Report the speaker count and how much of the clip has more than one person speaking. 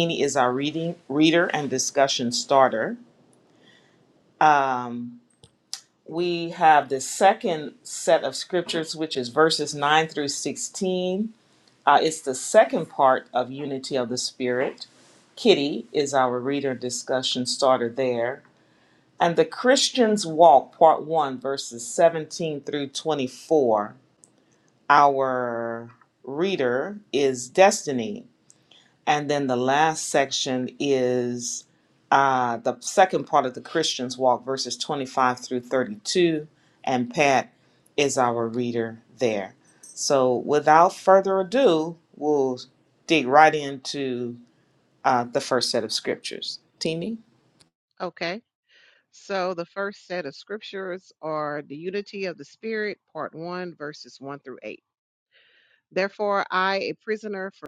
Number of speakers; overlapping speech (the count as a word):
two, no overlap